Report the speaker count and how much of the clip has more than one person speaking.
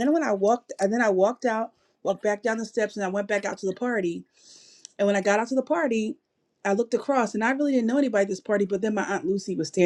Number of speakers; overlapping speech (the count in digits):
1, no overlap